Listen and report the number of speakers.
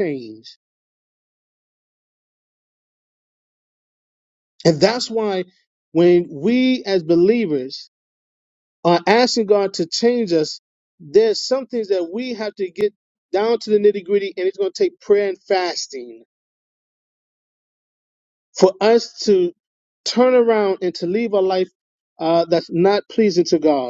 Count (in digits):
1